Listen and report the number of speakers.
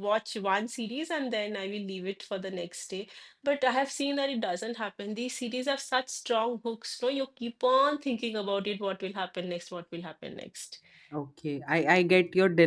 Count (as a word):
two